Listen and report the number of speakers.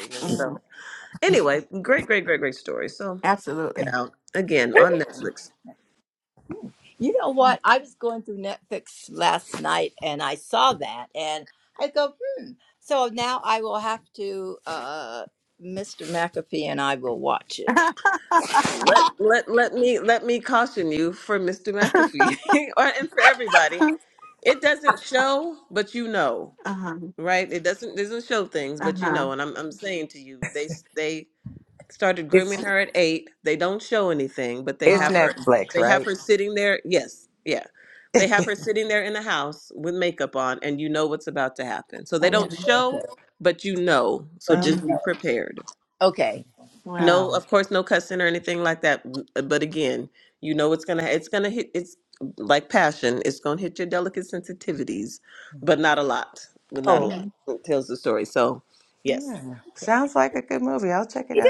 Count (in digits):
4